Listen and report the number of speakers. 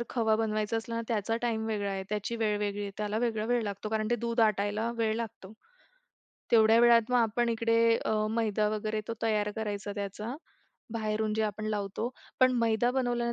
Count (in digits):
1